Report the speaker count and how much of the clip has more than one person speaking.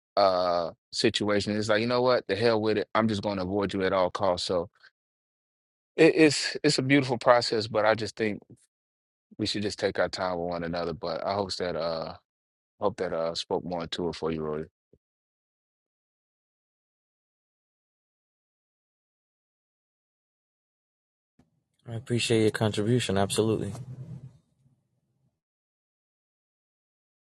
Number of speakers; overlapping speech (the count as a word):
two, no overlap